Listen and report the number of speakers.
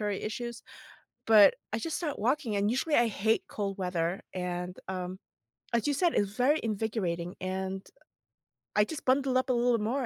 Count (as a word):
one